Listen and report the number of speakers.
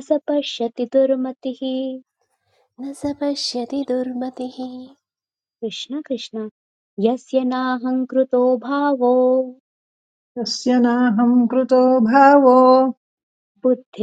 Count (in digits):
3